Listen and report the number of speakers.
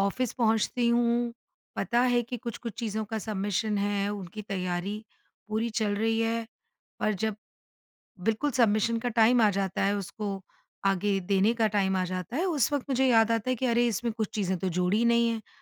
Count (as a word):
one